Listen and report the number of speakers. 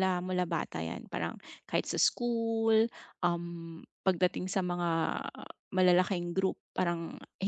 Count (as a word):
one